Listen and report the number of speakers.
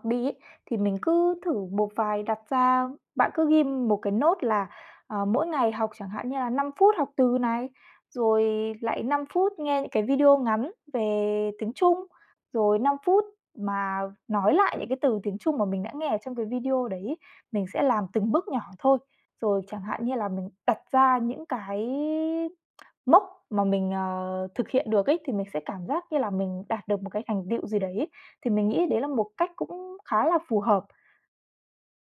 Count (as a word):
one